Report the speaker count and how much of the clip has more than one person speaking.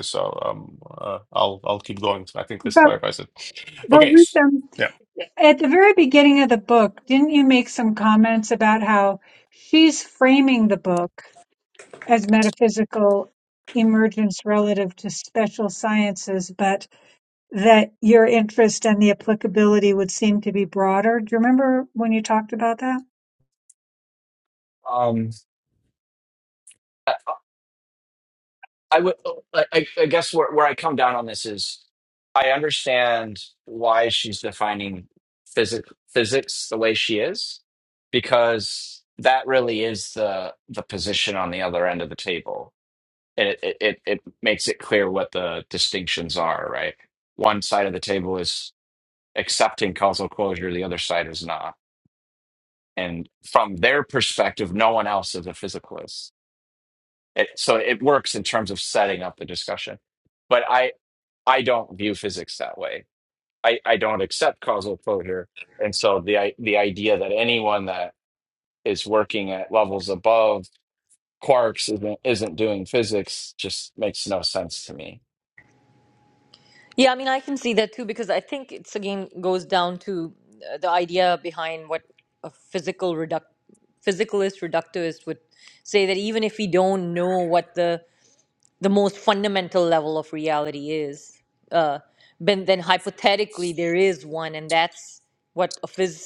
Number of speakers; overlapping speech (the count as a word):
four, about 1%